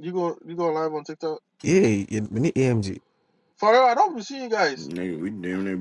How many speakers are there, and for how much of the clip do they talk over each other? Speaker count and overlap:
3, no overlap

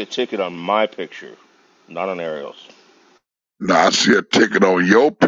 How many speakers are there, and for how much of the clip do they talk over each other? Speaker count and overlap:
2, no overlap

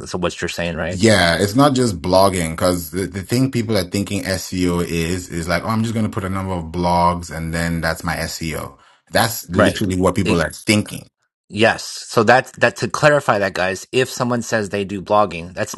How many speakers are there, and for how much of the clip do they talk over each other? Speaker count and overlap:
2, about 3%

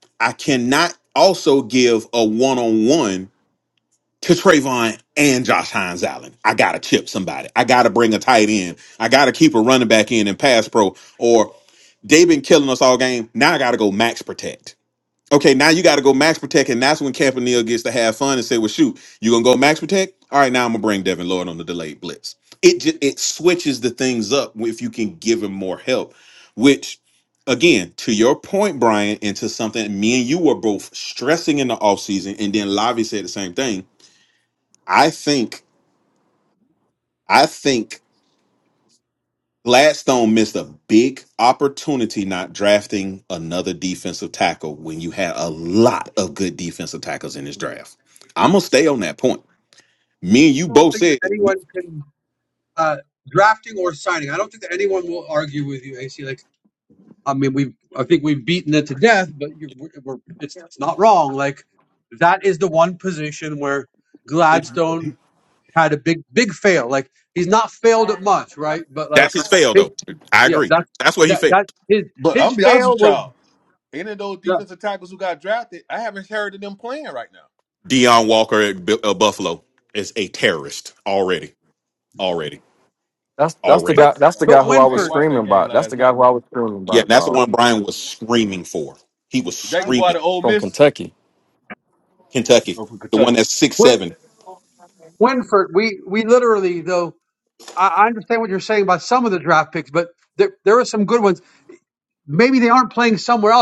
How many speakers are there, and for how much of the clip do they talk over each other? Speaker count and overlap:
4, about 7%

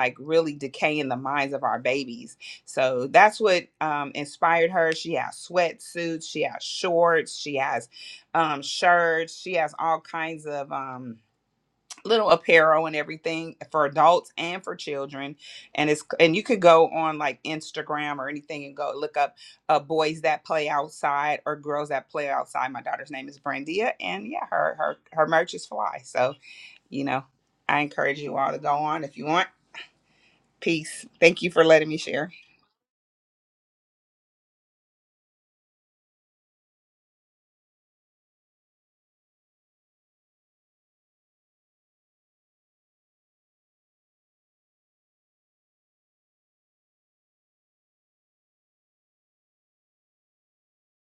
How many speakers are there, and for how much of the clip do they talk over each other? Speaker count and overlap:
1, no overlap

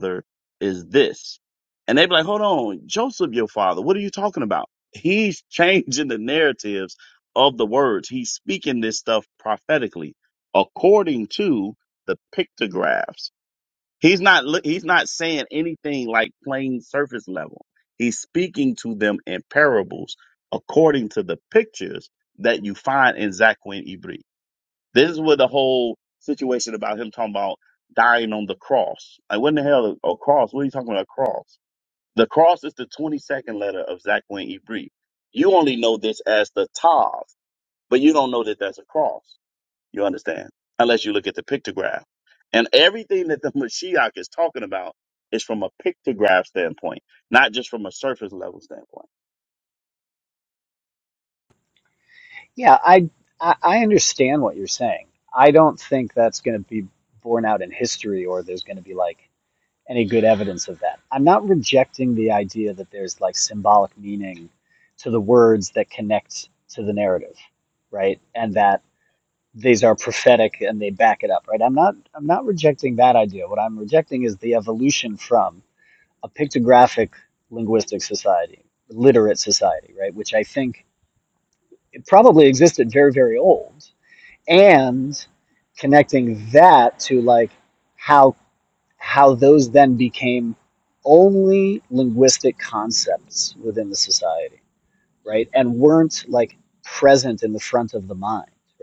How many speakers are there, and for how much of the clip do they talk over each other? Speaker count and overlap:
2, no overlap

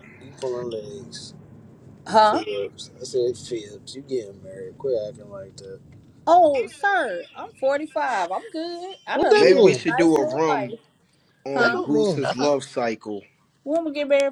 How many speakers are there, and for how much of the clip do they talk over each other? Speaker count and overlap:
3, about 18%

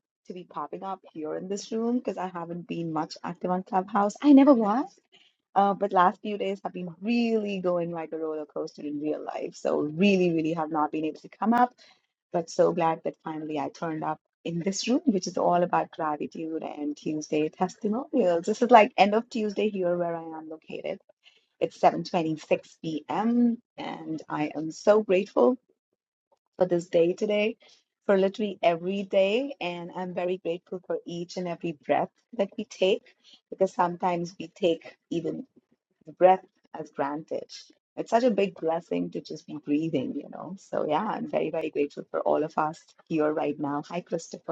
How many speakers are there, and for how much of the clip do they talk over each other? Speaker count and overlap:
1, no overlap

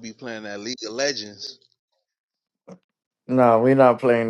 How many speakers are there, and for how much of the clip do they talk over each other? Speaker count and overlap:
2, no overlap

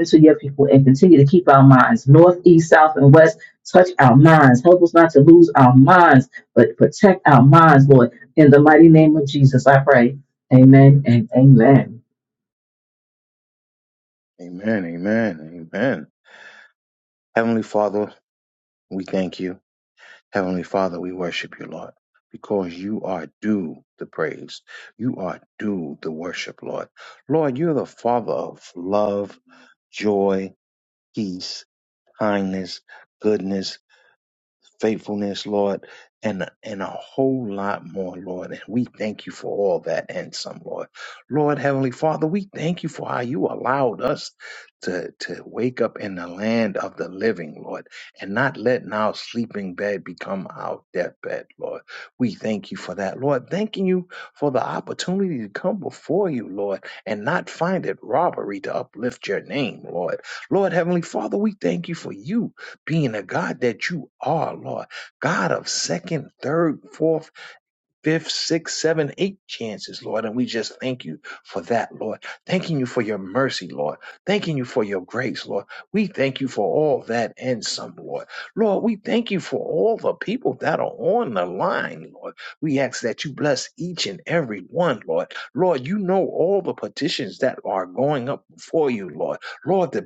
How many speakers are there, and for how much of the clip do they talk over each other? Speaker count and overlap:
2, no overlap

